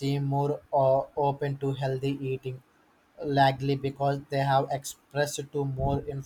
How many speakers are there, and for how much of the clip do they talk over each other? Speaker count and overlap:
1, no overlap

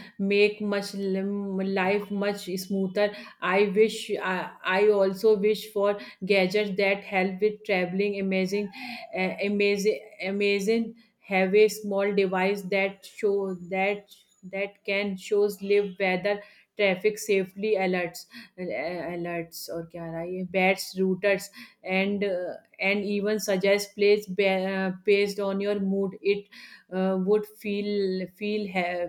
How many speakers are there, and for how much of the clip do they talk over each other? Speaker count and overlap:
1, no overlap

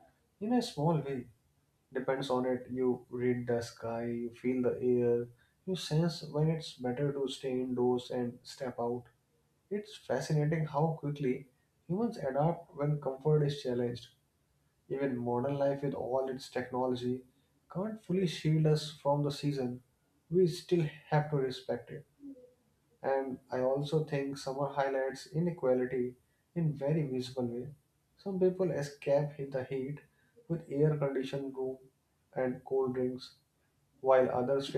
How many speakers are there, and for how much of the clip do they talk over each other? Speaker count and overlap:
1, no overlap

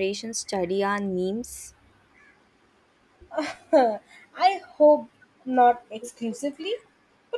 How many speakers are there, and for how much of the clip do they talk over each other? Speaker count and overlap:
2, no overlap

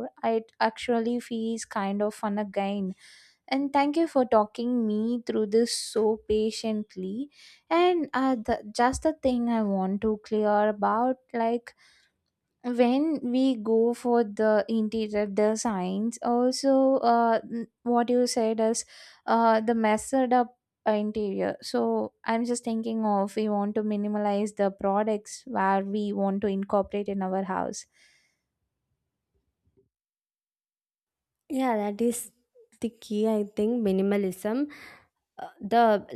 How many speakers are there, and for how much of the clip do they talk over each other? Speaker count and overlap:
2, no overlap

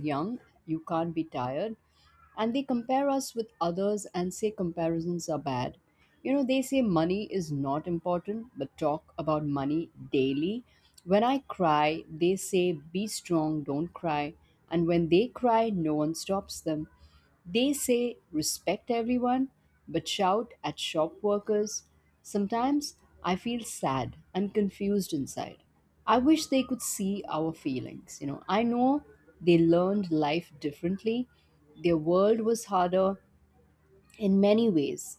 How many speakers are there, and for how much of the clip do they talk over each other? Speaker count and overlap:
1, no overlap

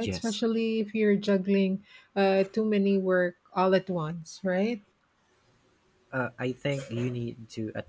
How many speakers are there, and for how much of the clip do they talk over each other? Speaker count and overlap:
2, about 3%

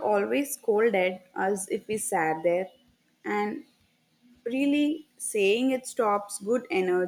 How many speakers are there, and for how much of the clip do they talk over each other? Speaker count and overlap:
1, no overlap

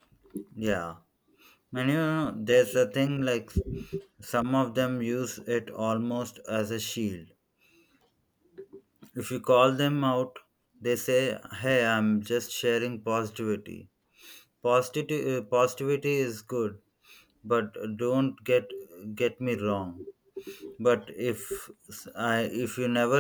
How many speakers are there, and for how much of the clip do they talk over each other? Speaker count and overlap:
1, no overlap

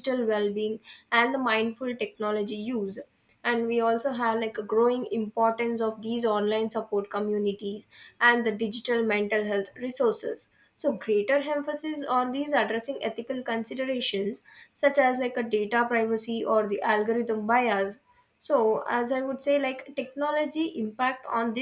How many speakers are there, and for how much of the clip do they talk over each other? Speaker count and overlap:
1, no overlap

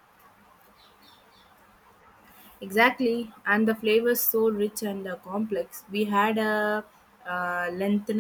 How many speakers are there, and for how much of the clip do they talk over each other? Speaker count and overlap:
1, no overlap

